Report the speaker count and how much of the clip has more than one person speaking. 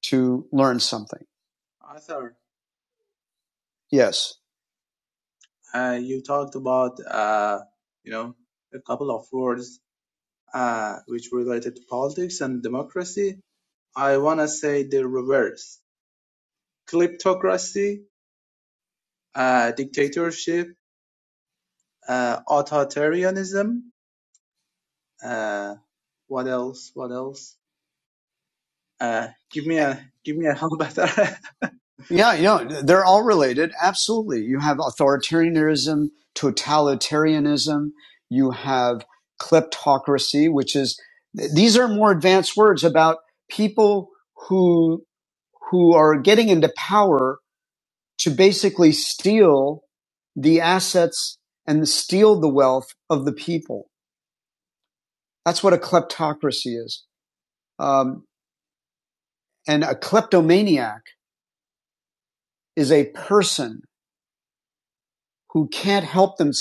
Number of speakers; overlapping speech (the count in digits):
2, no overlap